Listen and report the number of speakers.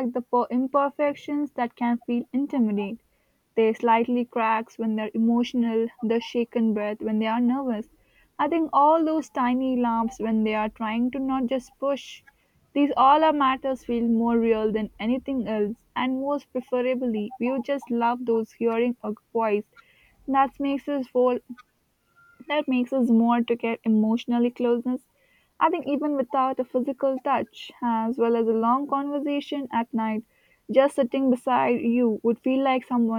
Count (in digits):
1